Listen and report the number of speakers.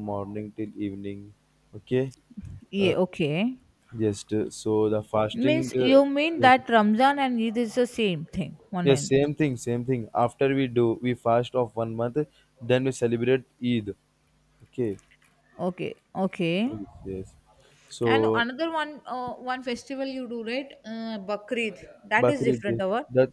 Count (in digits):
2